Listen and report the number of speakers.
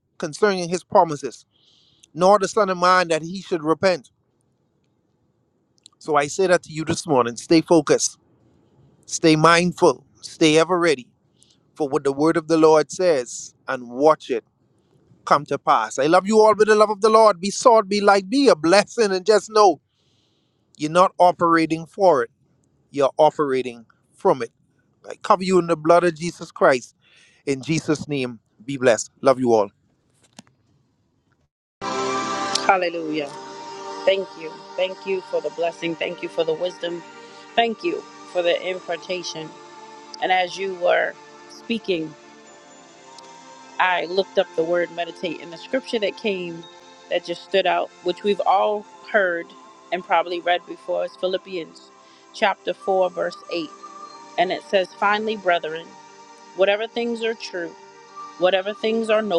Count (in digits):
2